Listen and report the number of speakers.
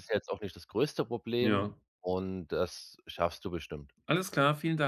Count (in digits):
2